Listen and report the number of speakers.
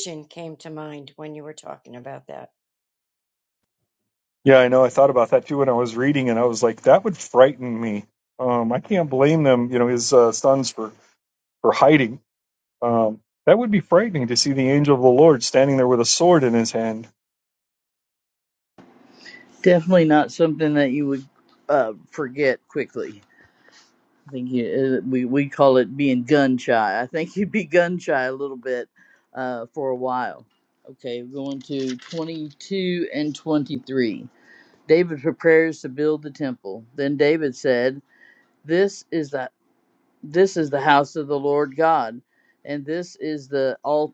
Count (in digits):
3